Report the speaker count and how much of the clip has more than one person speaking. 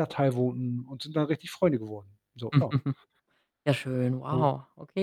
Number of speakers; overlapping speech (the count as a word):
two, about 3%